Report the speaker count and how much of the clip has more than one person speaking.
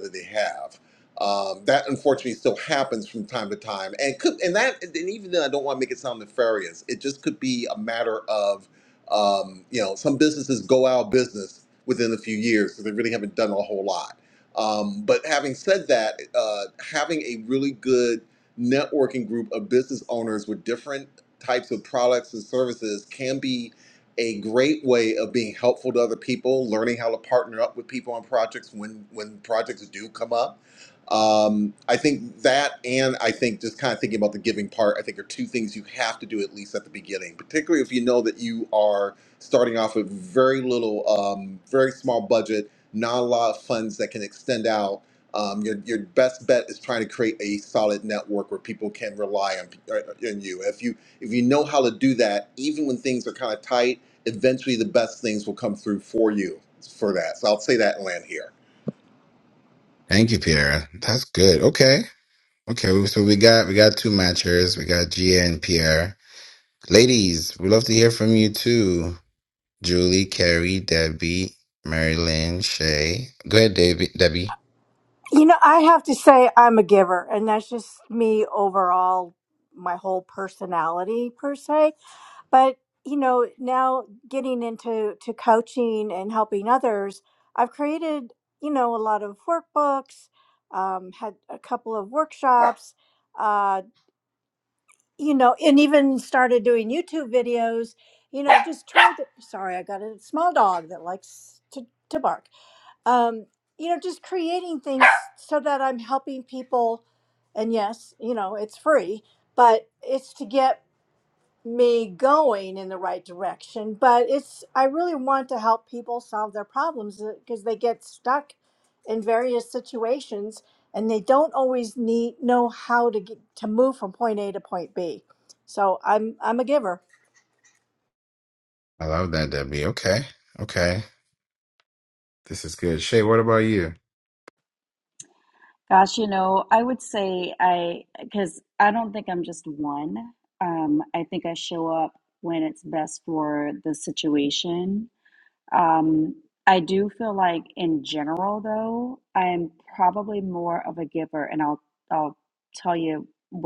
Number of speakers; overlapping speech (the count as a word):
four, no overlap